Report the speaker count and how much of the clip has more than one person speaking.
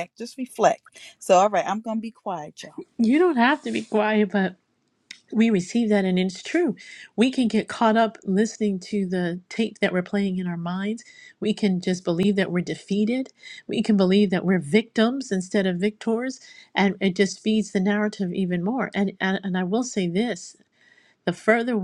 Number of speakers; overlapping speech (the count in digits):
2, no overlap